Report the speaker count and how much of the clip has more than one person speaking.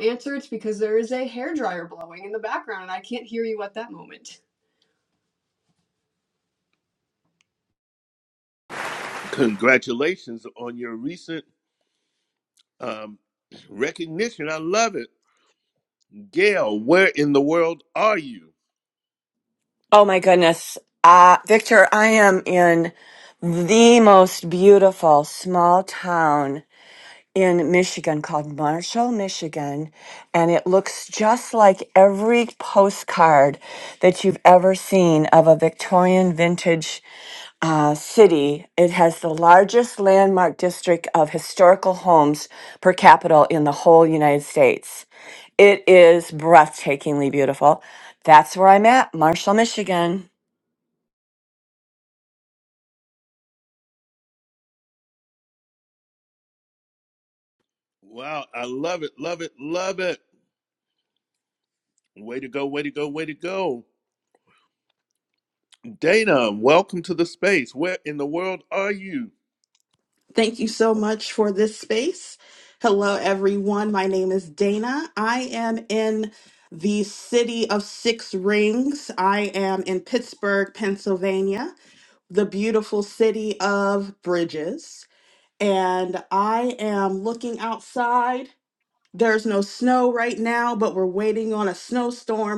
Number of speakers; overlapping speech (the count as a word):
four, no overlap